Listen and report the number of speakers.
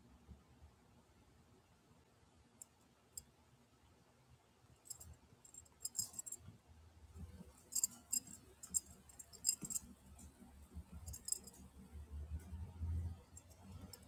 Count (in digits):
0